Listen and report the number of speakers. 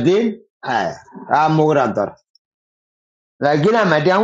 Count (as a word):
one